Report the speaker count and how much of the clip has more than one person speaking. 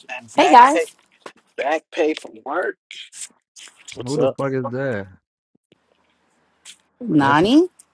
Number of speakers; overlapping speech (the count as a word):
three, about 13%